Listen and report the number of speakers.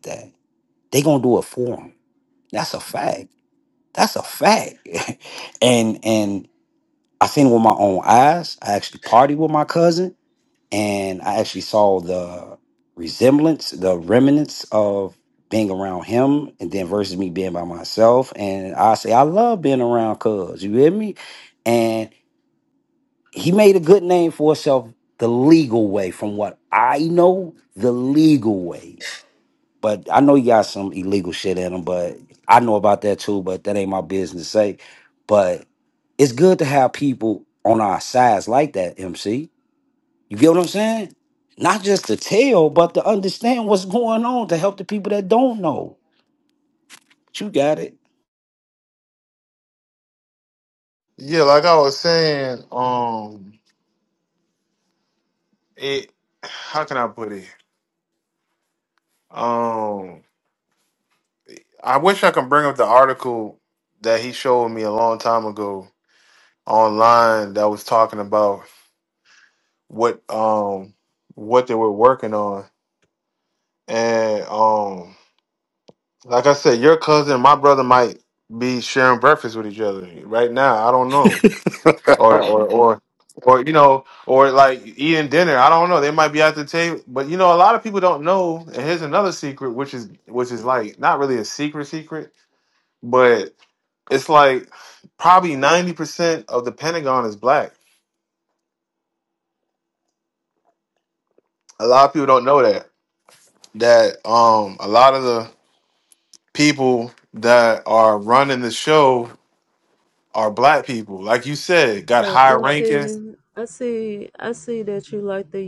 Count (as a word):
three